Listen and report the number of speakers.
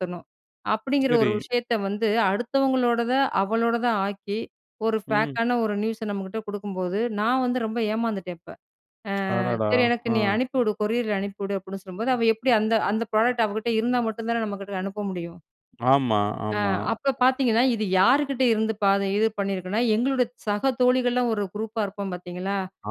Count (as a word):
two